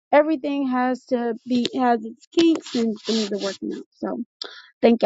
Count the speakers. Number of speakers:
1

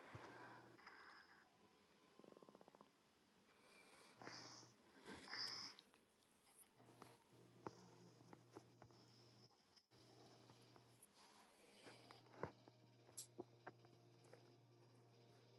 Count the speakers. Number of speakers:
0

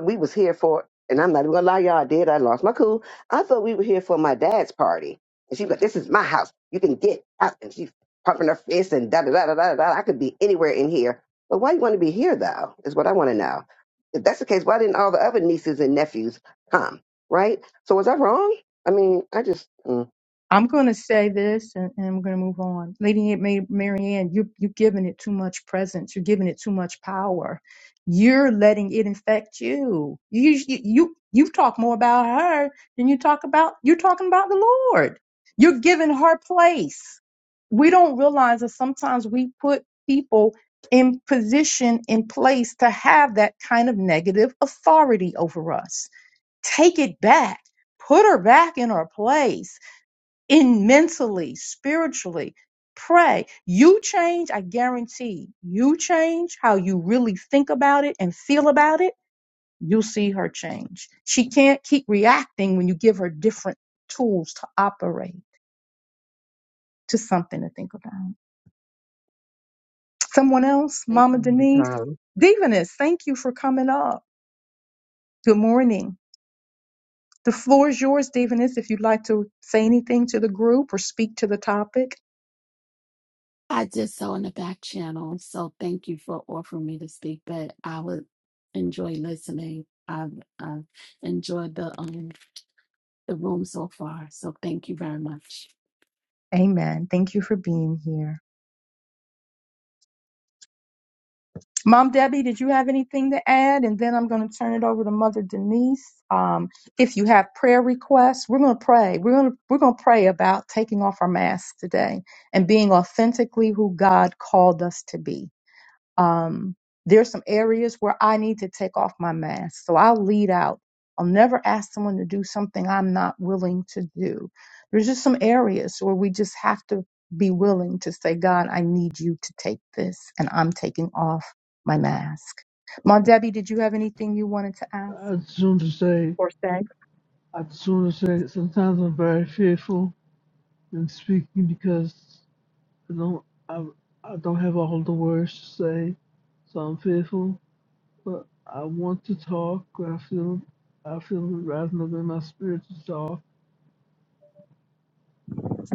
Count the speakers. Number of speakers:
4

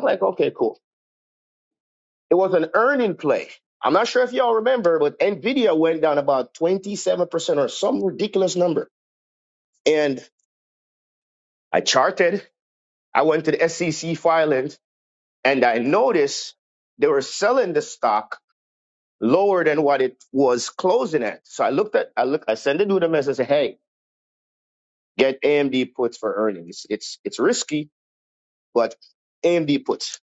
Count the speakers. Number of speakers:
1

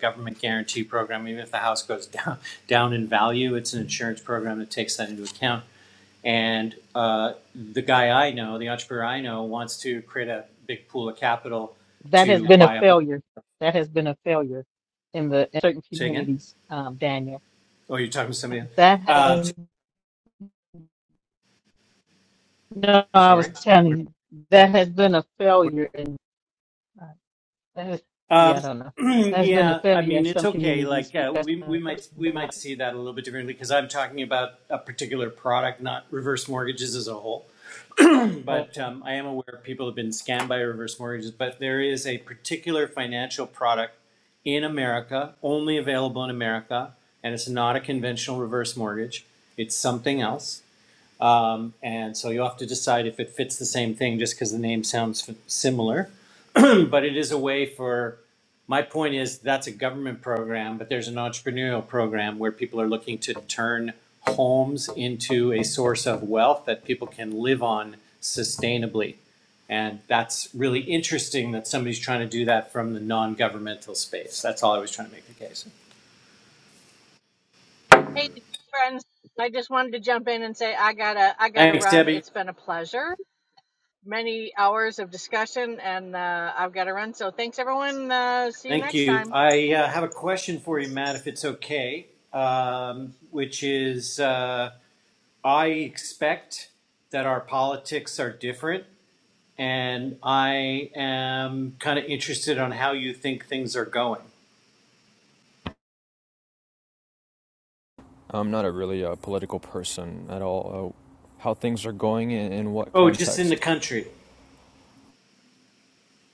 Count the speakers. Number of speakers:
4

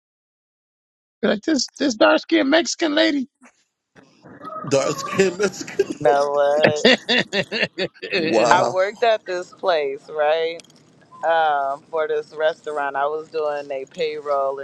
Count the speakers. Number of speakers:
3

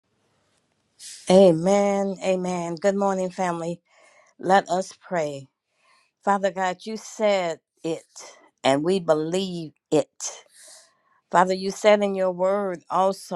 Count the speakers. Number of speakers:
1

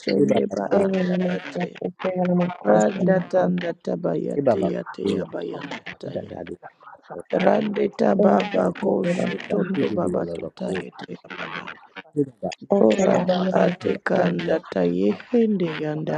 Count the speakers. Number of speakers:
4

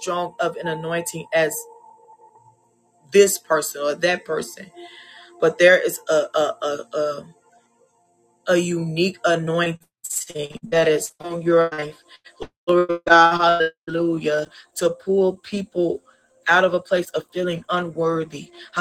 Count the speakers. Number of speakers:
1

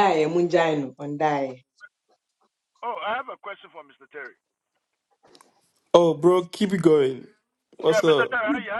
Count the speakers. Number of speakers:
3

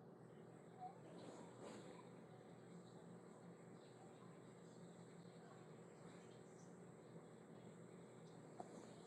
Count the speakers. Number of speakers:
0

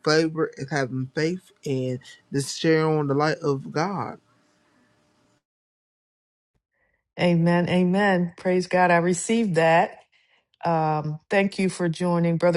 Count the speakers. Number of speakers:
2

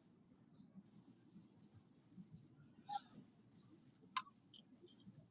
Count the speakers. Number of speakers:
0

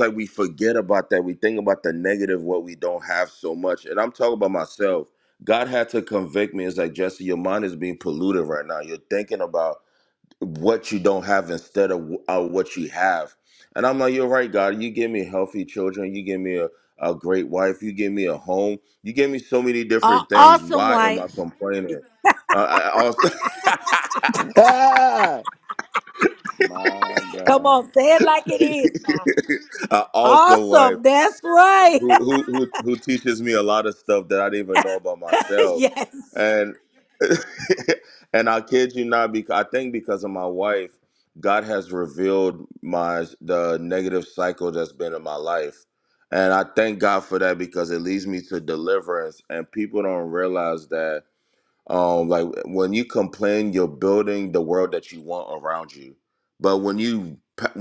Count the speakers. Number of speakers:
3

